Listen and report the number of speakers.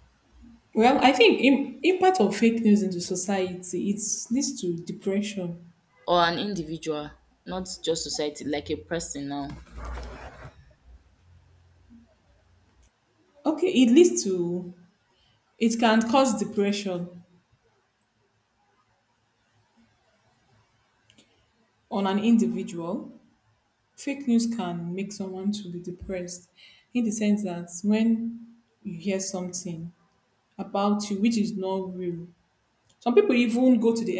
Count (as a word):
two